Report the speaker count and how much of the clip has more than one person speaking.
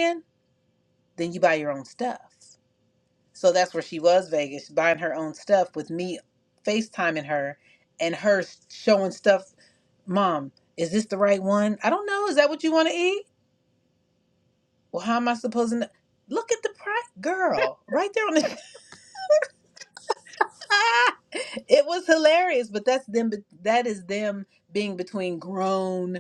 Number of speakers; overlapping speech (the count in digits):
1, no overlap